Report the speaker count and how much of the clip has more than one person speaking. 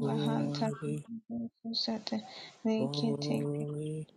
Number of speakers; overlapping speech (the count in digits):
2, about 28%